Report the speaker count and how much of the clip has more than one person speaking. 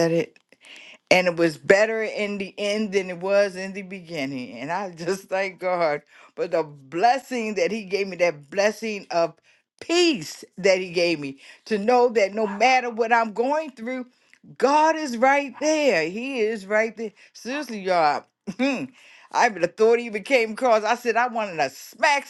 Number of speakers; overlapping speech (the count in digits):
1, no overlap